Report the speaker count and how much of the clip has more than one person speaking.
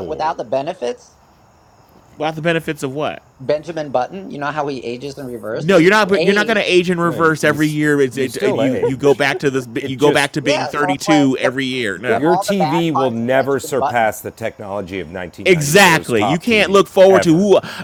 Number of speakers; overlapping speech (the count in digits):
3, about 47%